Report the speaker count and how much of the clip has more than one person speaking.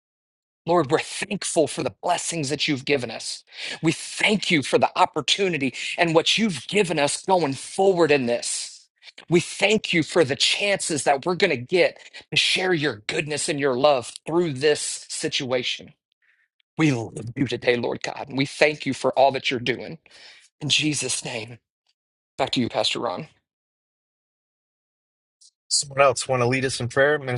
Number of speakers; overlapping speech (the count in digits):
2, no overlap